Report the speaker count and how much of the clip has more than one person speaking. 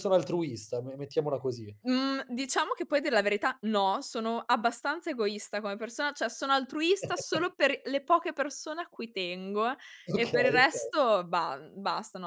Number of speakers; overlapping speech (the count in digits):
2, about 6%